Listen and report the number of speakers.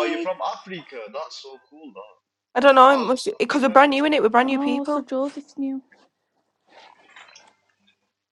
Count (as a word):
three